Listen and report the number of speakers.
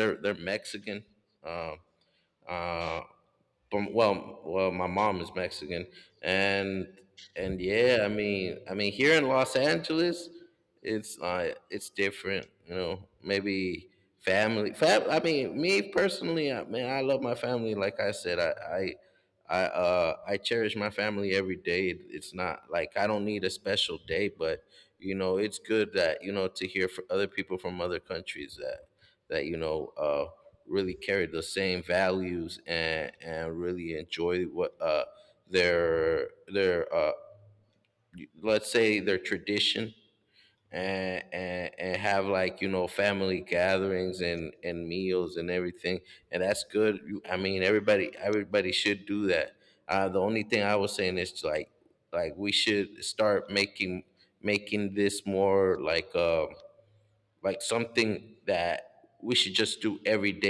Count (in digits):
1